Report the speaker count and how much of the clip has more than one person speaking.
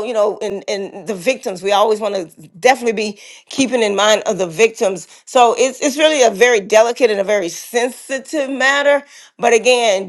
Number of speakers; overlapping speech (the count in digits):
1, no overlap